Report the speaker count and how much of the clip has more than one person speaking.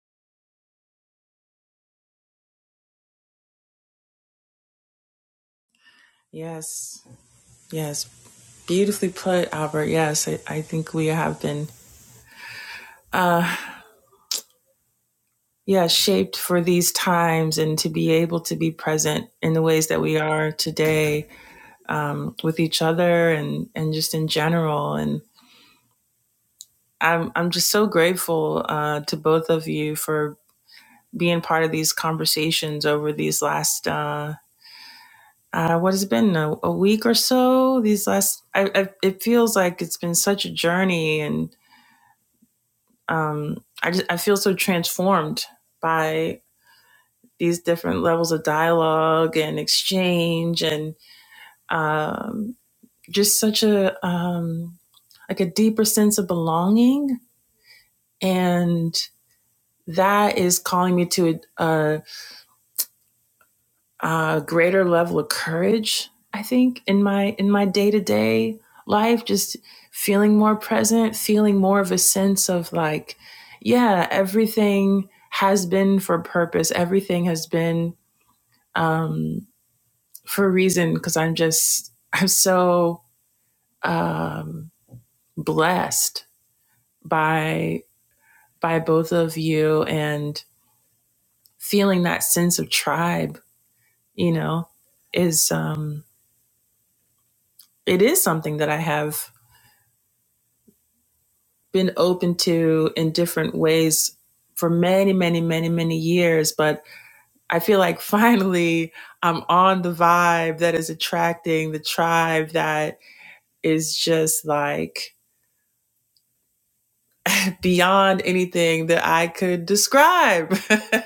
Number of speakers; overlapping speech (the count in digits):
1, no overlap